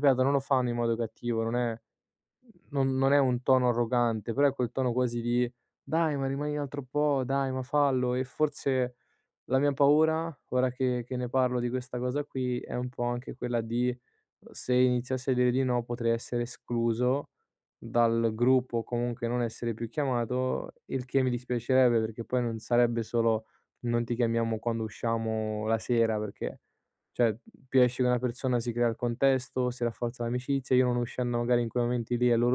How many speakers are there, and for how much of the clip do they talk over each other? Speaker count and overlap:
1, no overlap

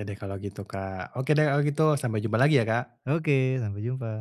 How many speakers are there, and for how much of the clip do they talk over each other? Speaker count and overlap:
2, no overlap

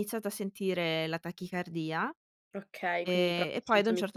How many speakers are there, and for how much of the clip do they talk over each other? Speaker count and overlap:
2, about 27%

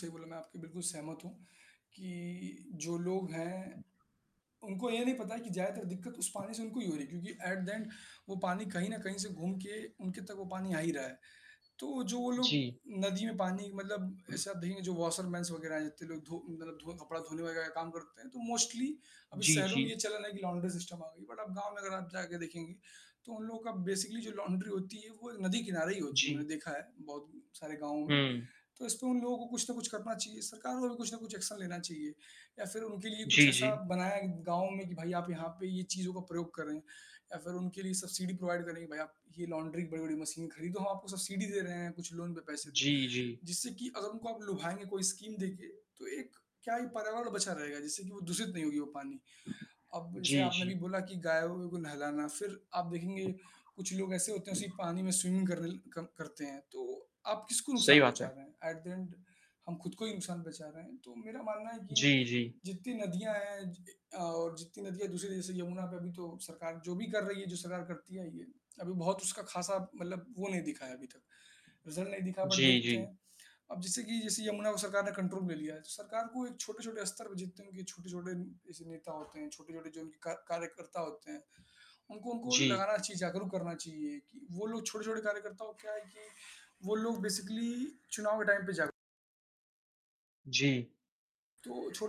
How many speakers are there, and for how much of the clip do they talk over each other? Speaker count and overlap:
2, about 4%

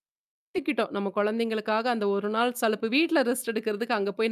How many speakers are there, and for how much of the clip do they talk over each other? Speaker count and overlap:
1, no overlap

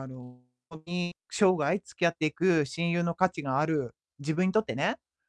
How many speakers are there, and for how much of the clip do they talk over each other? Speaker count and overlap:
1, no overlap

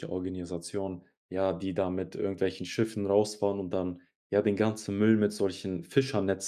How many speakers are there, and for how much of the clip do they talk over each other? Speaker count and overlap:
1, no overlap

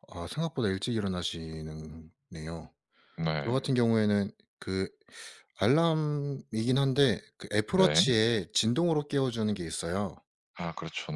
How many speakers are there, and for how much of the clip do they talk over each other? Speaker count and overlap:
2, about 5%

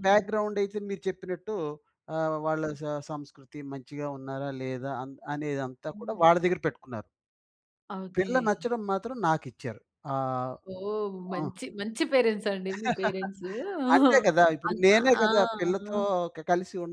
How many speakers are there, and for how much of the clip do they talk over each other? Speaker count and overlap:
2, about 10%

